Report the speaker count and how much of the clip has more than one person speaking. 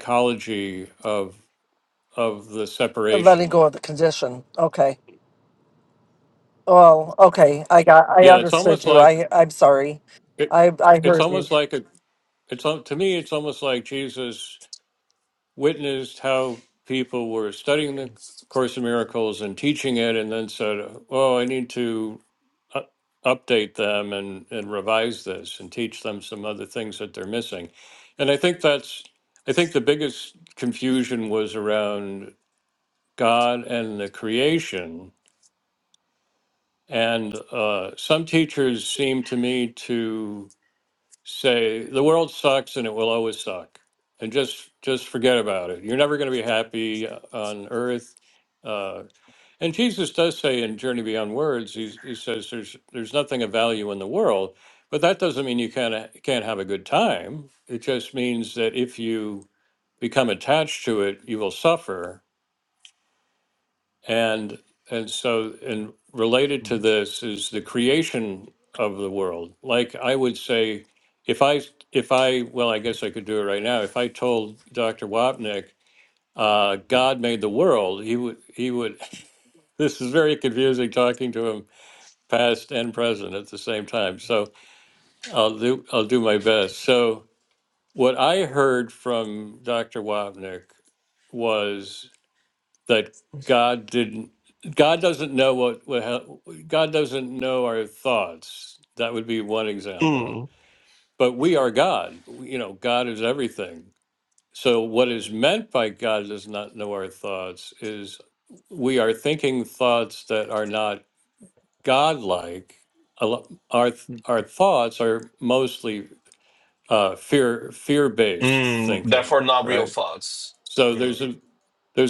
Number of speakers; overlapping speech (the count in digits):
3, about 3%